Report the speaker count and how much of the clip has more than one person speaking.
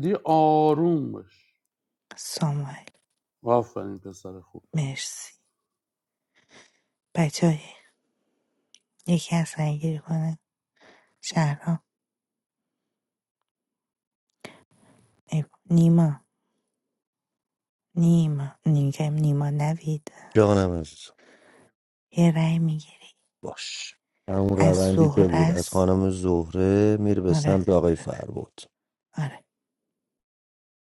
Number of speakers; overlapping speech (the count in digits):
3, about 4%